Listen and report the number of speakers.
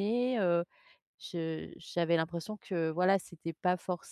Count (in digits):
1